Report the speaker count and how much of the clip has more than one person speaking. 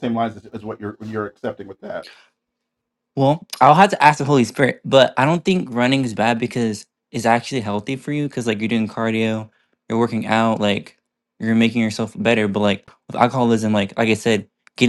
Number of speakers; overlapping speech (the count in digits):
2, no overlap